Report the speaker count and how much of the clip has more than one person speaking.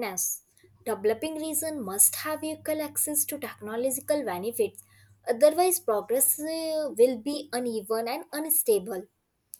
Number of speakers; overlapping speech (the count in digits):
1, no overlap